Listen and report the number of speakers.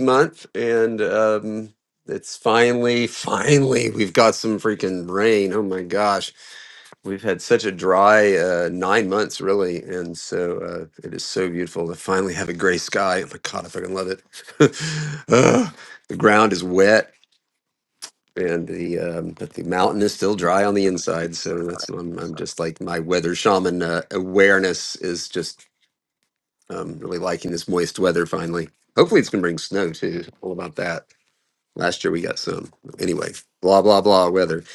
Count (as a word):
one